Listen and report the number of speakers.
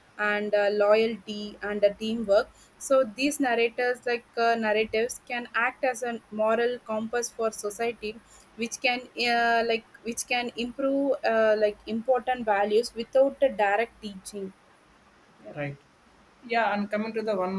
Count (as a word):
two